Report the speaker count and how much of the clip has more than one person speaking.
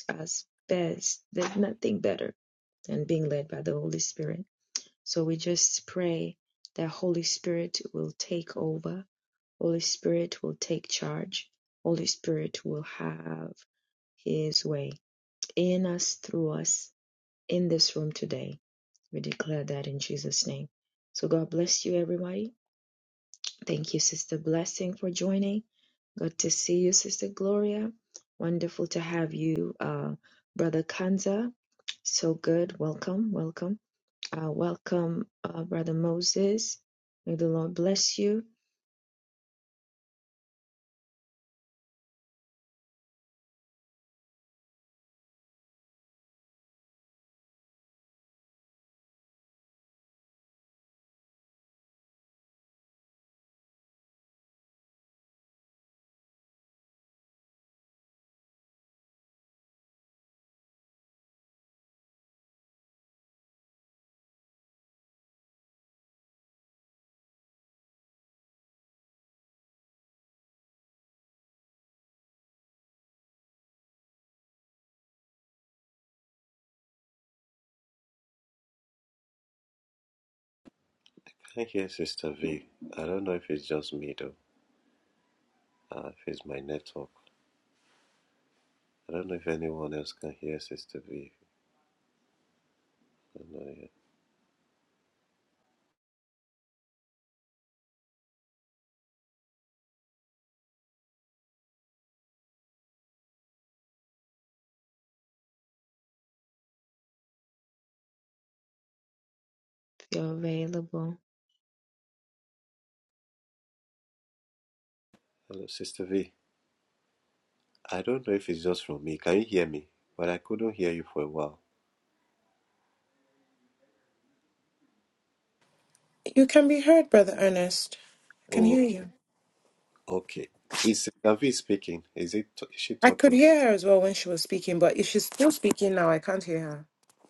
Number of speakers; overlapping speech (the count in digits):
3, about 1%